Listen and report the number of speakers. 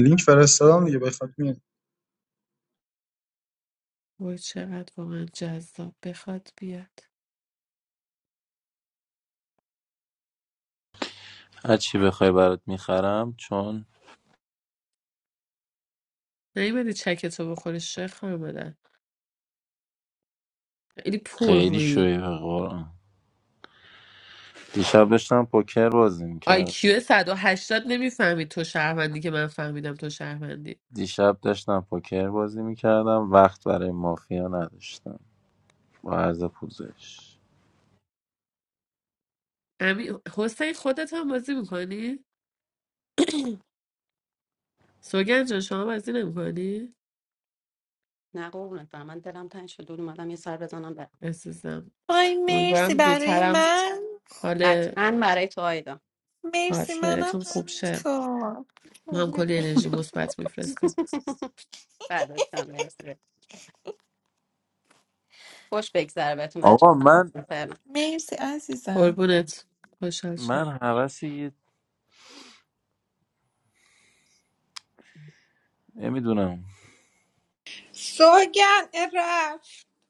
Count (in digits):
6